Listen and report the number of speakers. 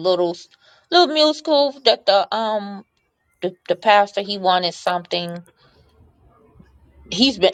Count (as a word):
one